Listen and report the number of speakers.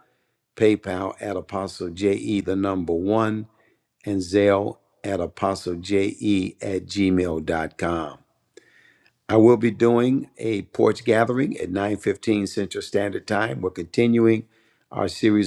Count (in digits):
1